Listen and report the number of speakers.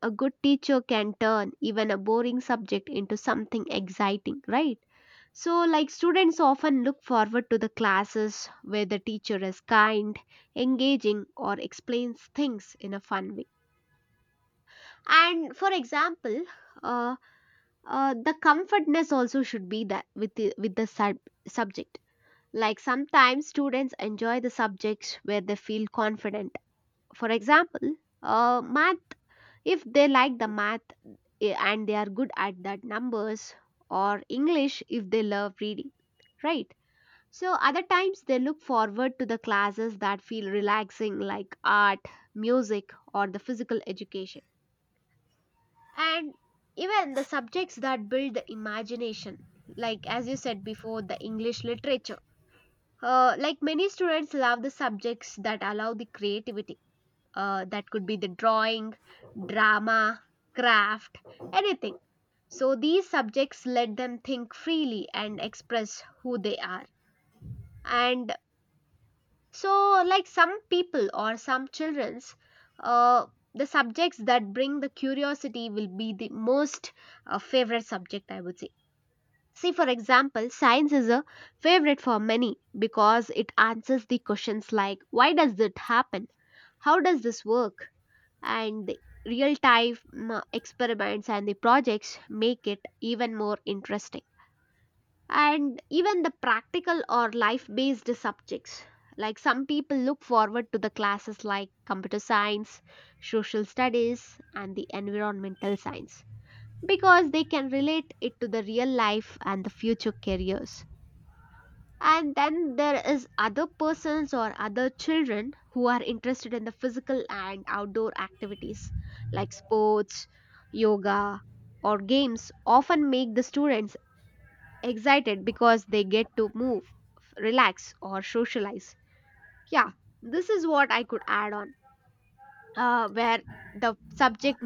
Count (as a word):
one